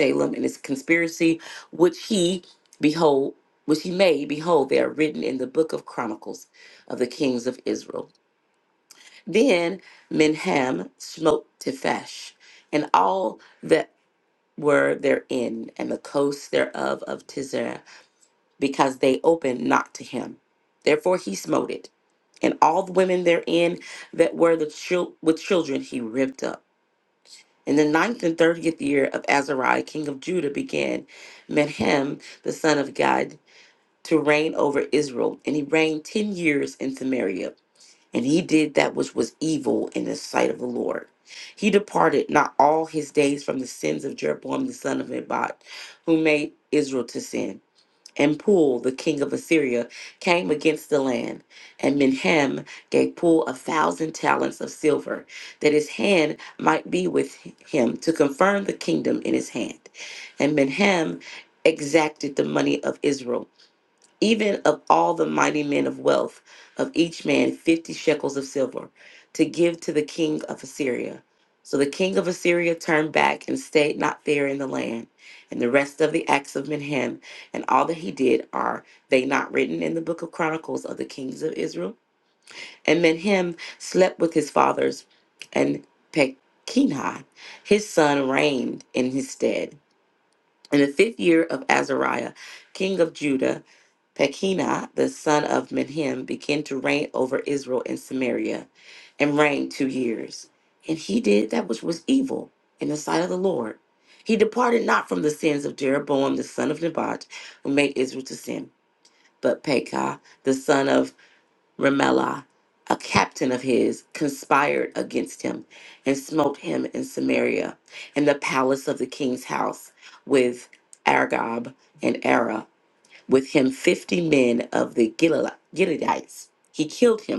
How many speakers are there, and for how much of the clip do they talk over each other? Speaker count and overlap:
one, no overlap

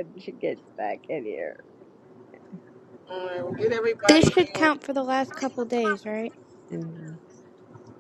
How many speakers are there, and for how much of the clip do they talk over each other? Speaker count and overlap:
three, about 8%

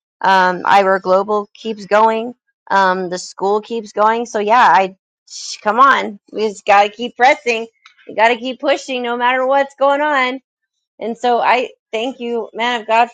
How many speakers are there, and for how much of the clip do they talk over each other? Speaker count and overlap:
one, no overlap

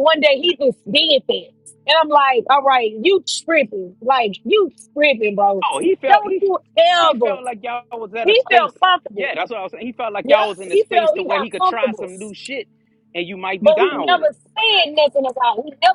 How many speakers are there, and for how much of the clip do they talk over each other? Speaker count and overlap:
two, about 24%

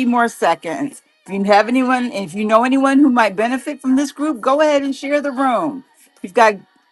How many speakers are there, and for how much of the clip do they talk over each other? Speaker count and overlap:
one, no overlap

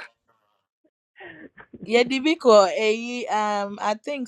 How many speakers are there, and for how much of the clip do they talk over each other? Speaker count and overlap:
one, no overlap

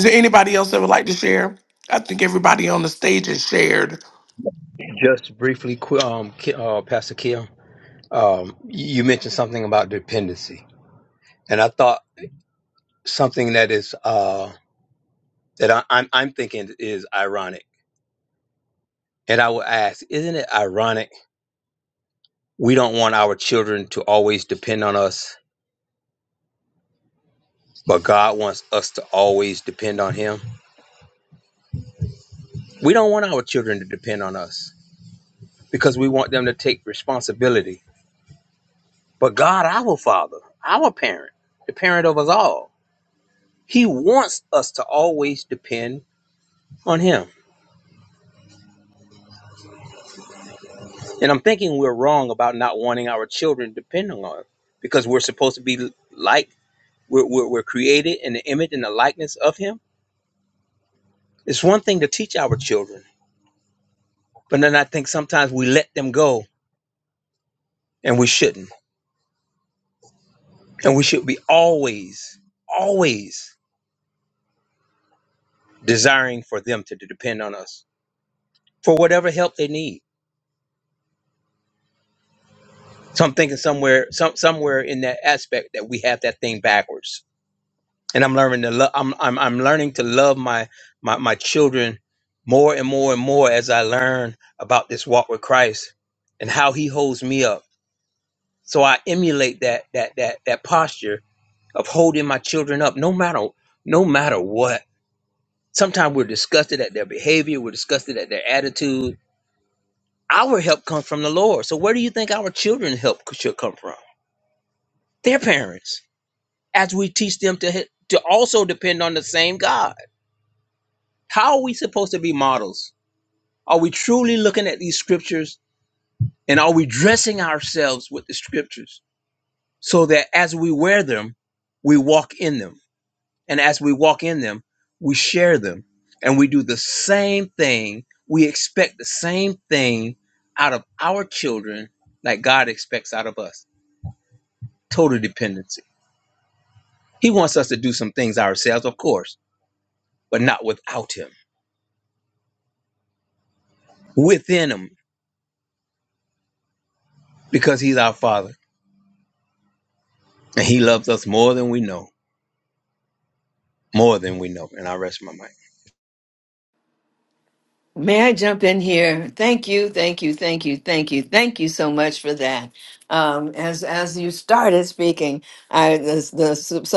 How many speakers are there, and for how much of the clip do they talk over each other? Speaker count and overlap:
three, no overlap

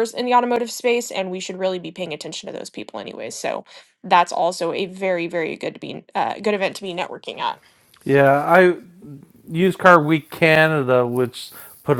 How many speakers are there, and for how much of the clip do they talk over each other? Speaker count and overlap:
two, no overlap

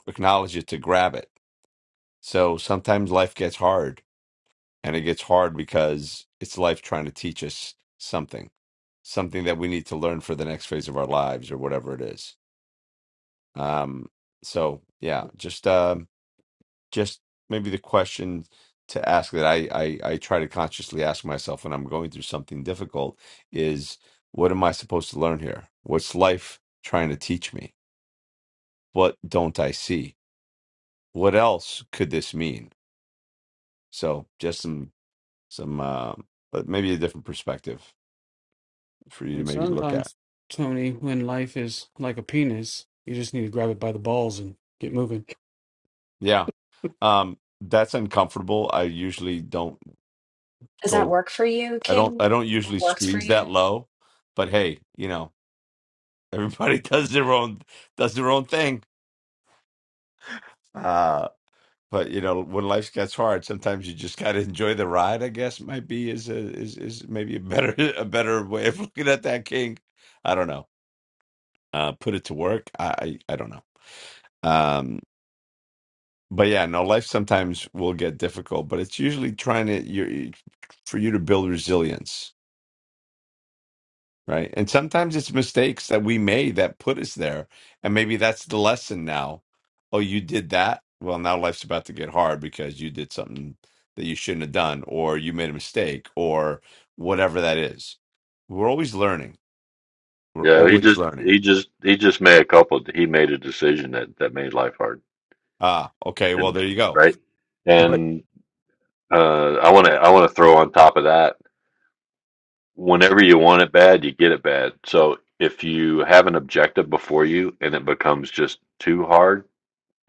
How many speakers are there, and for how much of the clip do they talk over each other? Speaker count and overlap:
four, about 3%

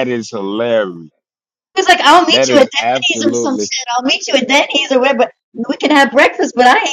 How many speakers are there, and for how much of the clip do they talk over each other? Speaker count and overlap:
two, about 20%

